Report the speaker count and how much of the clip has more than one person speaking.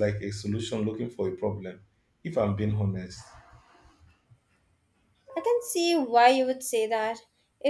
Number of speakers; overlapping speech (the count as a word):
two, no overlap